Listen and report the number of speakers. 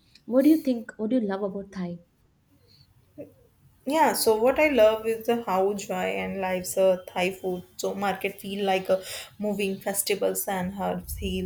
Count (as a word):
two